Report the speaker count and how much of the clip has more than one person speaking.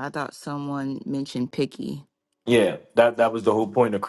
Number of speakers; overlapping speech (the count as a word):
two, no overlap